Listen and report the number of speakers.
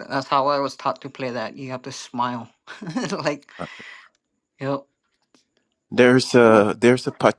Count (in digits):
2